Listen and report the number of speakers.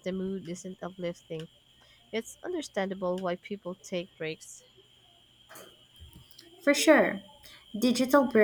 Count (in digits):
2